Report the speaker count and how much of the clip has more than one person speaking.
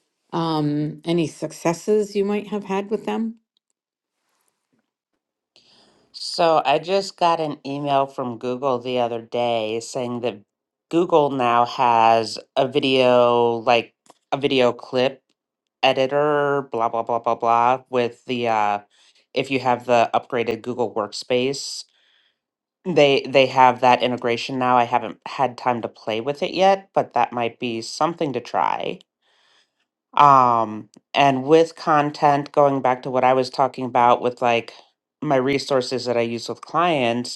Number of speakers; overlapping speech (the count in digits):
2, no overlap